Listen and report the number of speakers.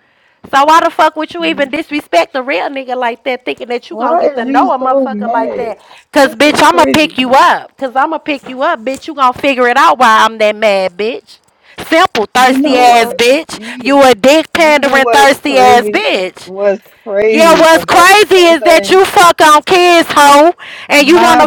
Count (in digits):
2